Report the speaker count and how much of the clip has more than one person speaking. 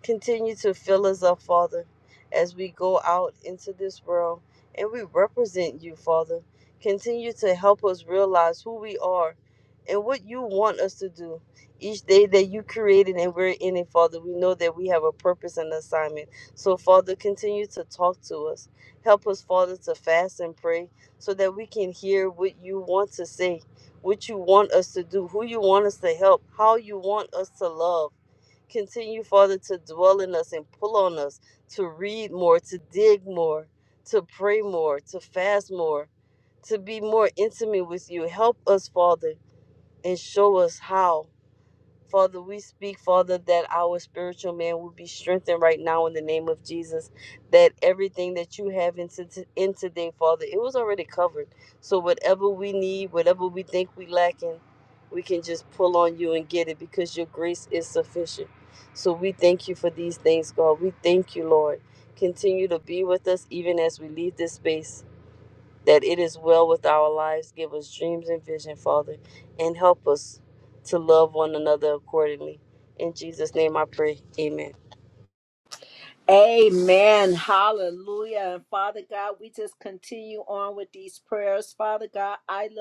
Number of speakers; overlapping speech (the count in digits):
2, no overlap